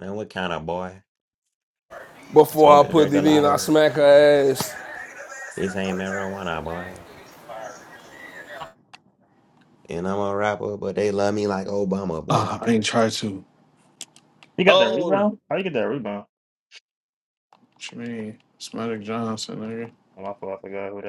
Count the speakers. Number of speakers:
4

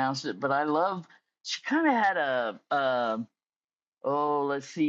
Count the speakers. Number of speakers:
1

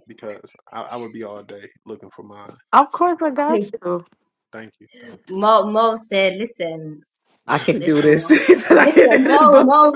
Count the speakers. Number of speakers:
3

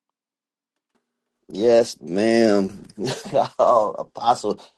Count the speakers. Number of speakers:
1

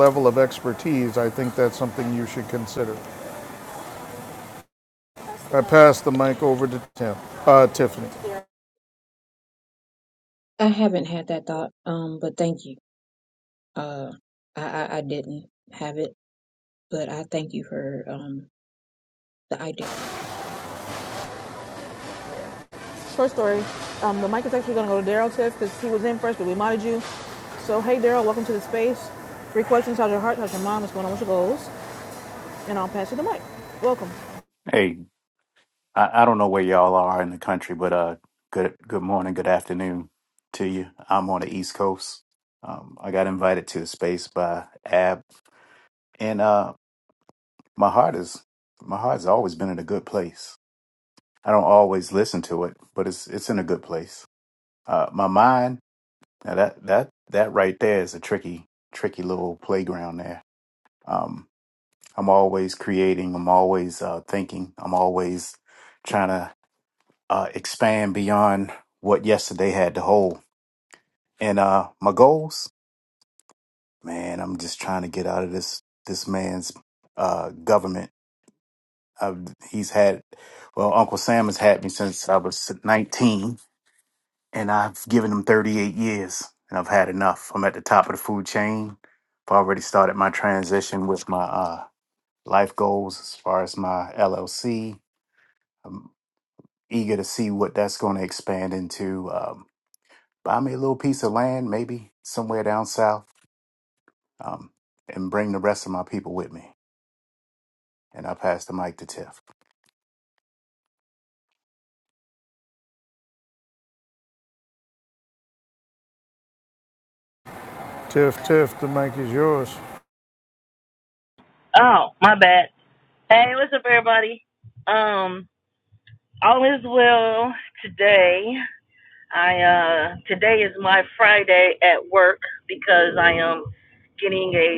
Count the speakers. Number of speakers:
5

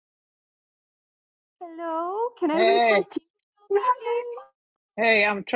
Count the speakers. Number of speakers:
2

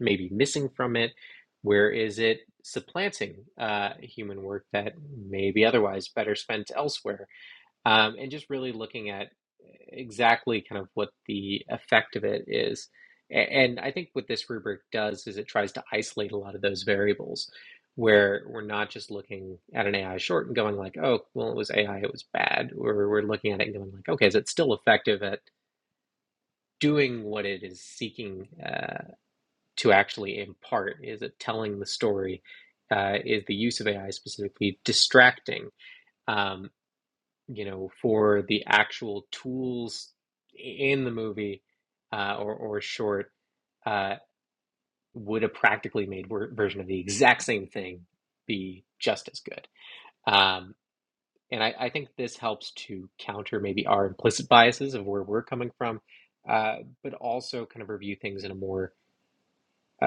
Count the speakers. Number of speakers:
1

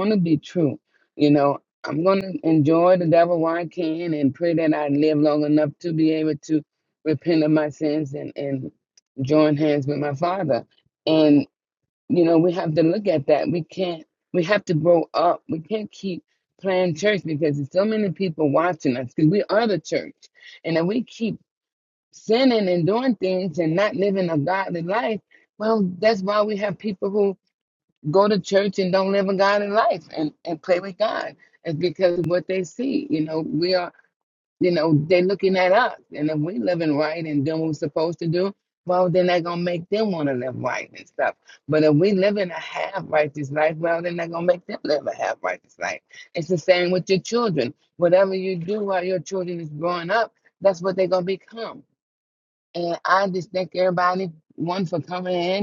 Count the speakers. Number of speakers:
1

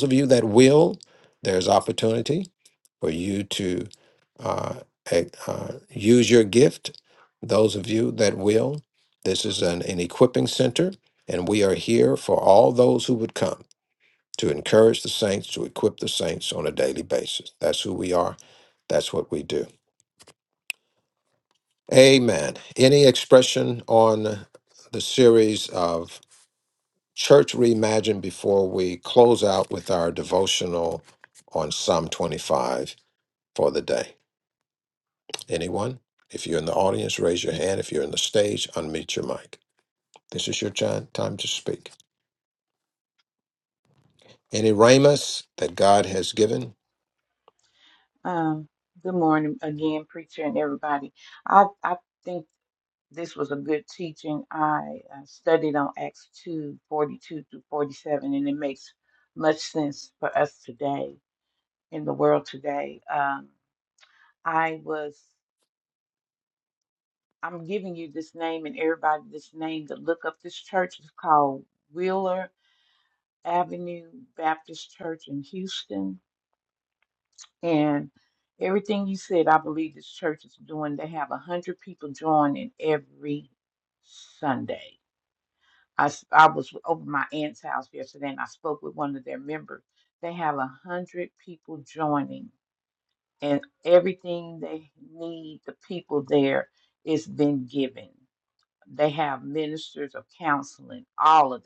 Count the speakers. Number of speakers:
2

